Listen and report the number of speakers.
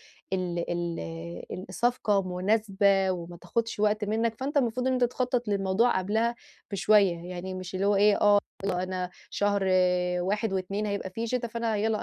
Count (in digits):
1